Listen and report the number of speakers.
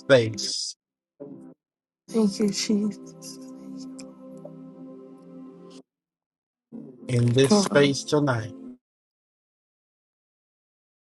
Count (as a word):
two